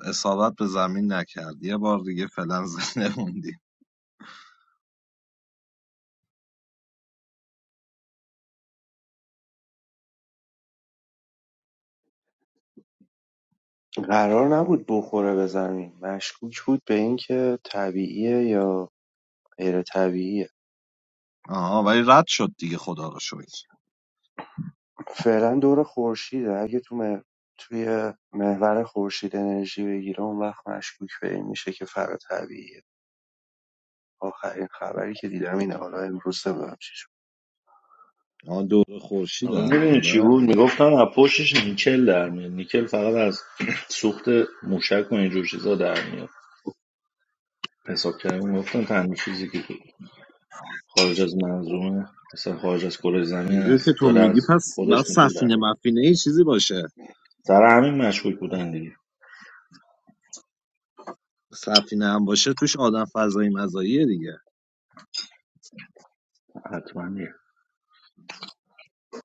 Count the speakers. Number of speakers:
3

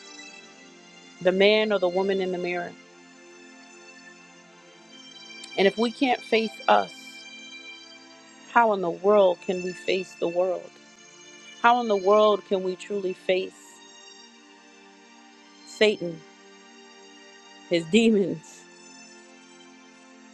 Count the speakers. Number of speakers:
1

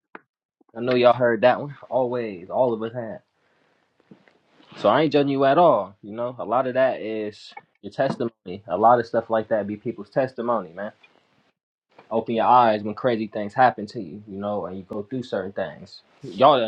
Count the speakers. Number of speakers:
1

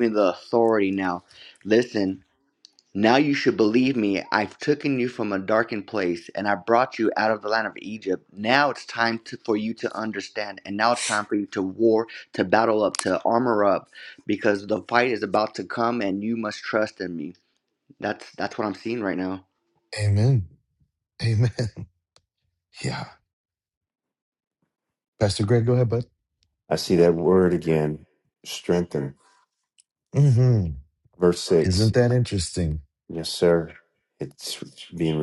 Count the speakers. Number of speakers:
3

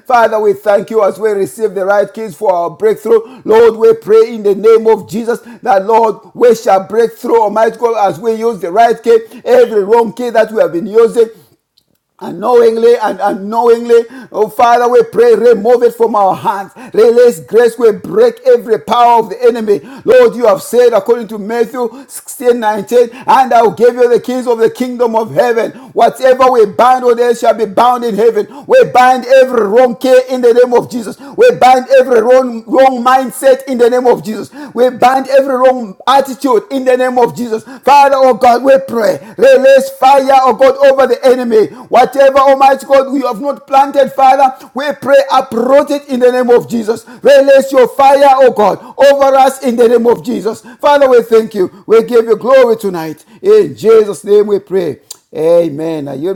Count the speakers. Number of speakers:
1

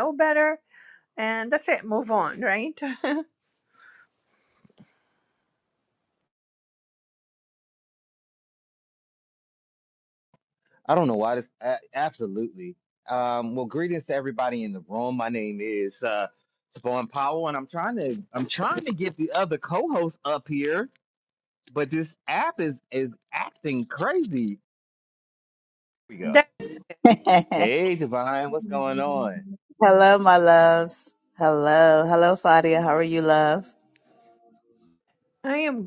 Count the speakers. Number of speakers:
3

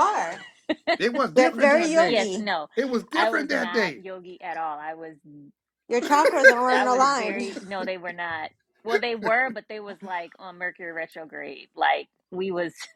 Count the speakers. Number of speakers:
3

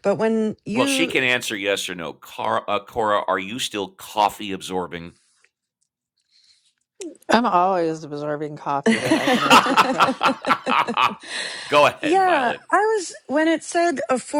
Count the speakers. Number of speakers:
3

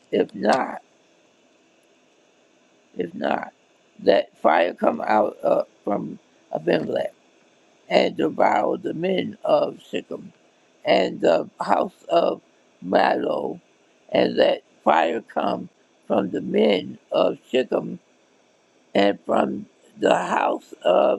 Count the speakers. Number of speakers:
1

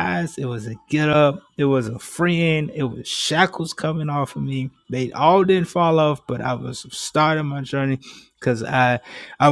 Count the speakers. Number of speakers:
1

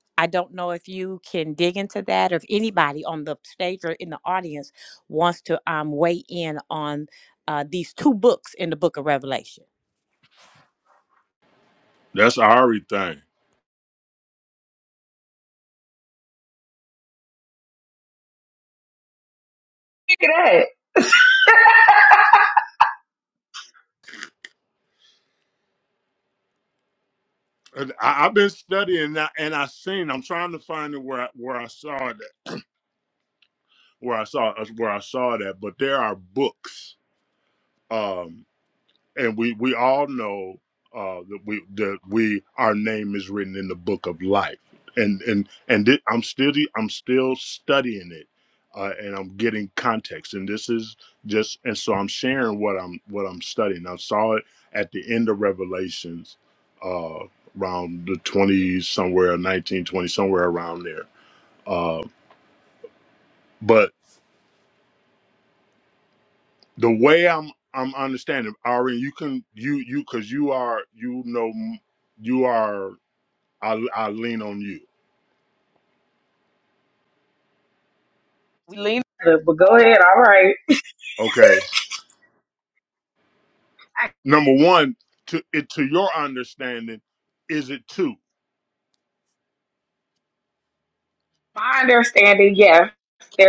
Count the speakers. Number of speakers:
3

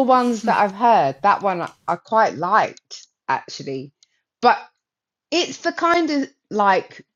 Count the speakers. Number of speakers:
1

